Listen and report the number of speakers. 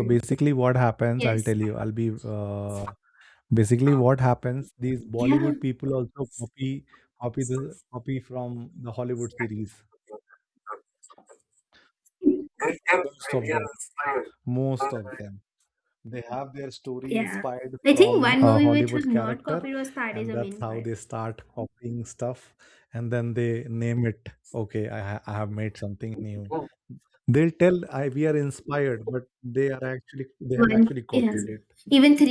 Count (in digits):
2